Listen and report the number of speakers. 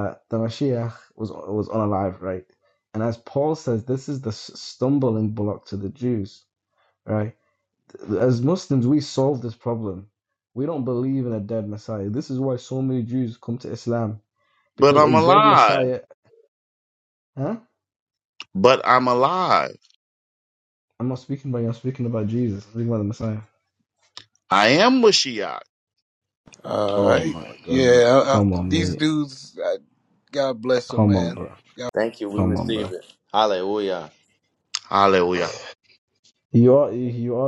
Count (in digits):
4